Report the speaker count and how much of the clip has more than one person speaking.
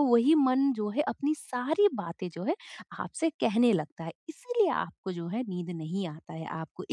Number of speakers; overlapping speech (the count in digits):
1, no overlap